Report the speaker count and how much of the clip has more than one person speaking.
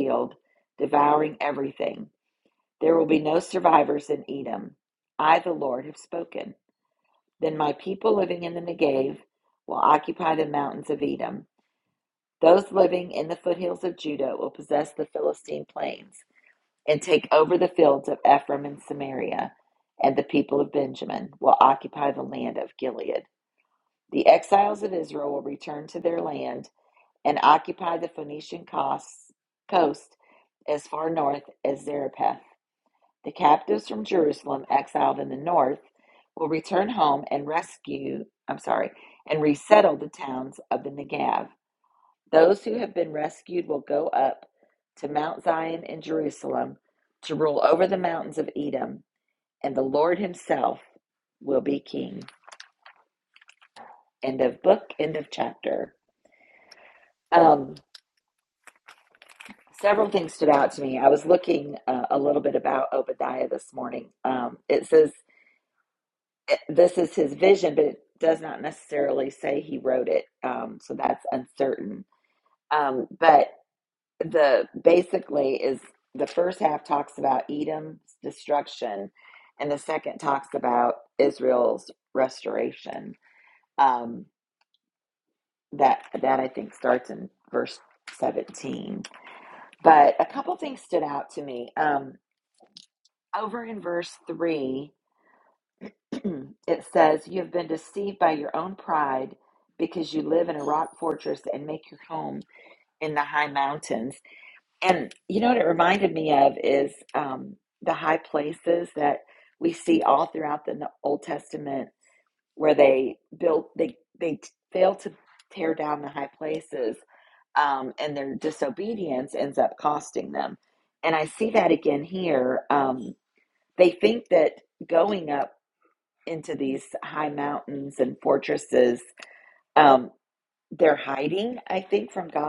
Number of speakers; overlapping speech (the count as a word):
one, no overlap